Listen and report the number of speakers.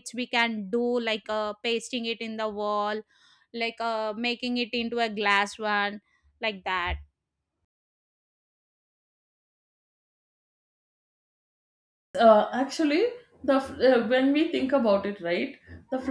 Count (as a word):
two